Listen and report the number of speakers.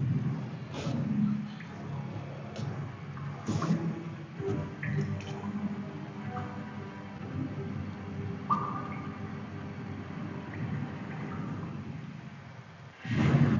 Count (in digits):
0